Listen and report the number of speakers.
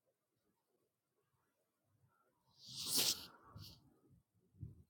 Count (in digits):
0